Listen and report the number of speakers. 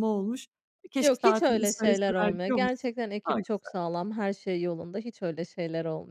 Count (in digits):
2